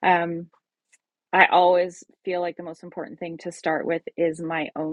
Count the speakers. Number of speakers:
1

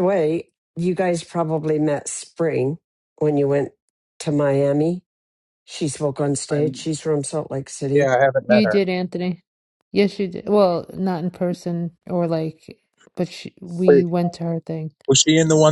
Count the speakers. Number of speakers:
3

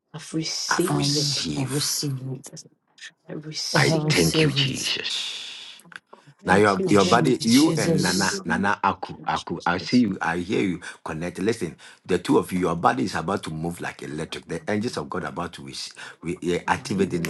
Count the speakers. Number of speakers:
3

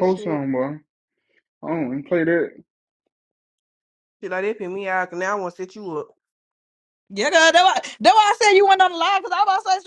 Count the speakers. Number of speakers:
3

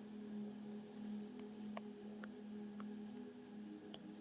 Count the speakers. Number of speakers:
0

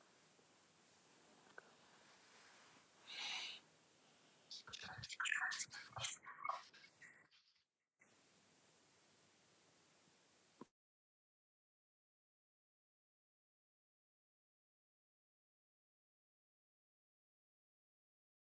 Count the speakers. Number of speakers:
0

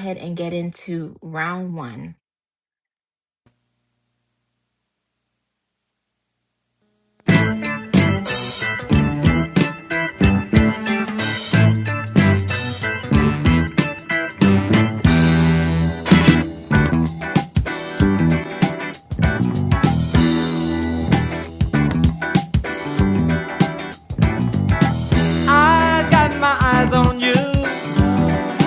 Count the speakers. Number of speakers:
2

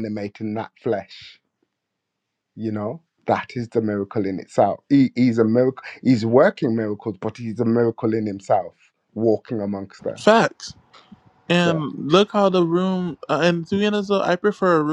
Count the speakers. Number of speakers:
2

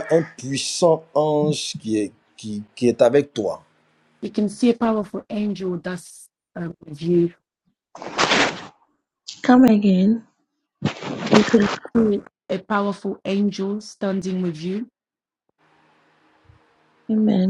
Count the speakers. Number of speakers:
3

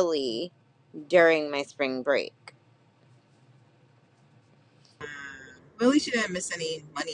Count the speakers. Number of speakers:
2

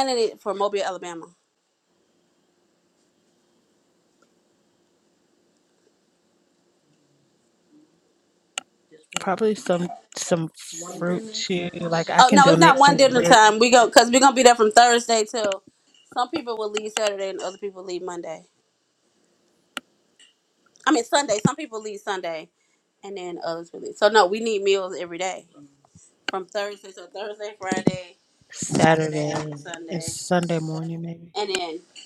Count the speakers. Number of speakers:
2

